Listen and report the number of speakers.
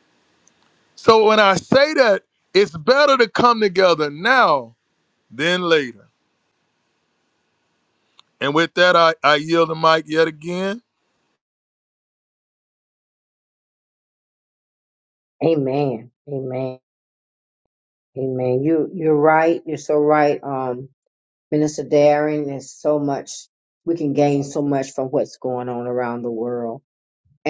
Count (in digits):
2